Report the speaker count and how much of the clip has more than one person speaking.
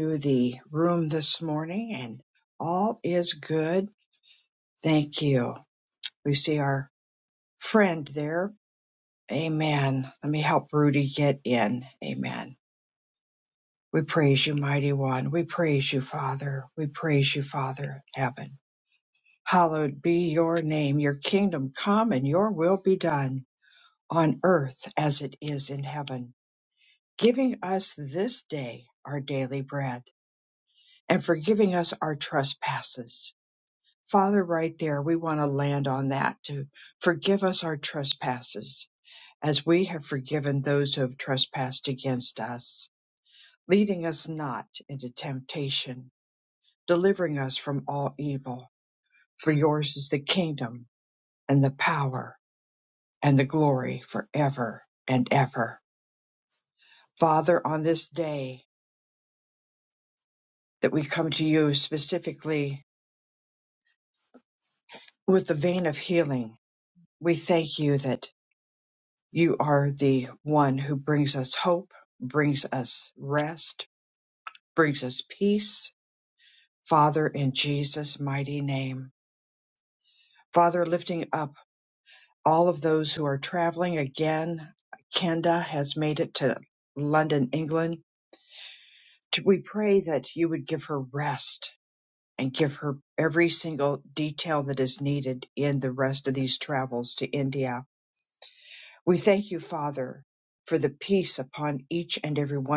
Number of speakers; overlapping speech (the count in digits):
1, no overlap